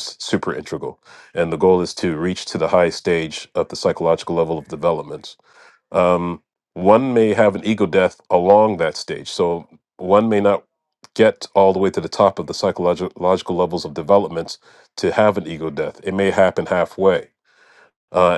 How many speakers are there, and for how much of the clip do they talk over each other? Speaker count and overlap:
1, no overlap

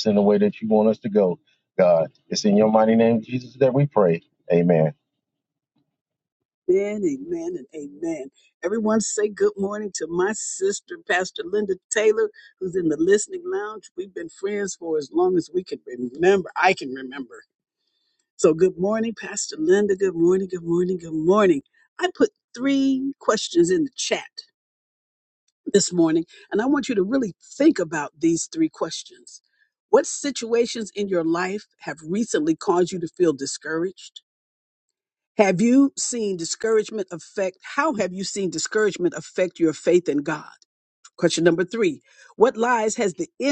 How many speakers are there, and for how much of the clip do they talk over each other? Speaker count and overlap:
2, no overlap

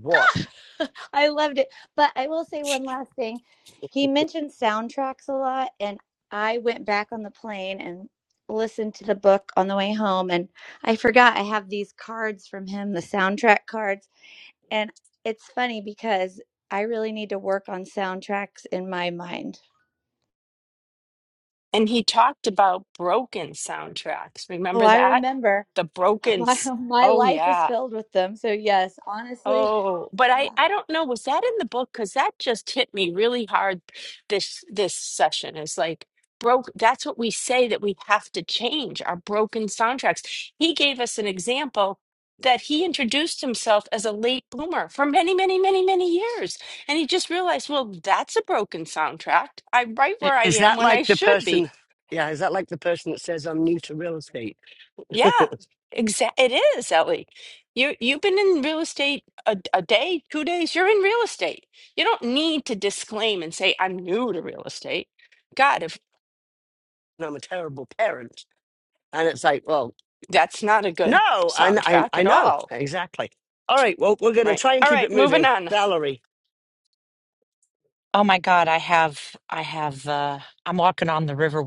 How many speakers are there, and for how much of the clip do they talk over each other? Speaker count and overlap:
4, about 8%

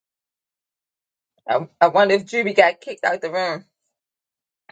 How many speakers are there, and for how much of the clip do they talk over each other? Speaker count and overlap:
1, no overlap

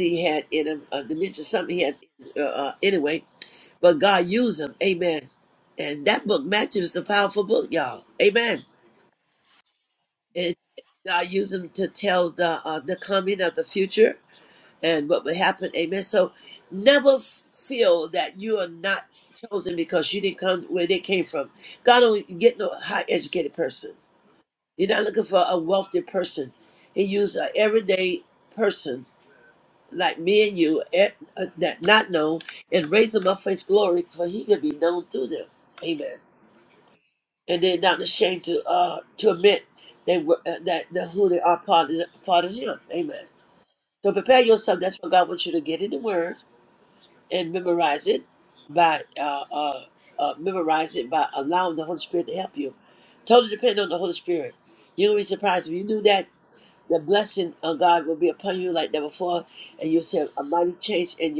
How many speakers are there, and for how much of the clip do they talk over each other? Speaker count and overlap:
1, no overlap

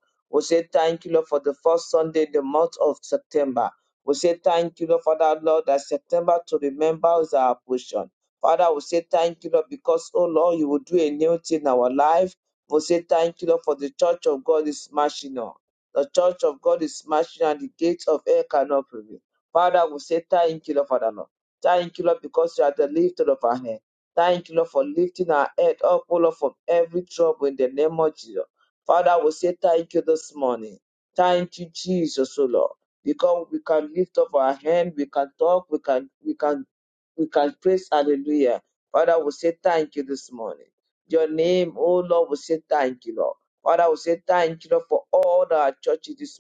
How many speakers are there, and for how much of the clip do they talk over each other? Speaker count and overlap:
1, no overlap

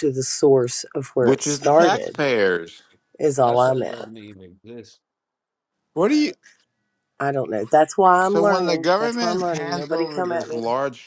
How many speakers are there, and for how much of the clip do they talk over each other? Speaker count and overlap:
3, about 34%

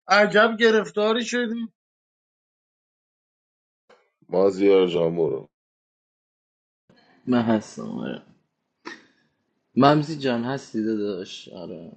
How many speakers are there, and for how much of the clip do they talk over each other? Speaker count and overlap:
3, no overlap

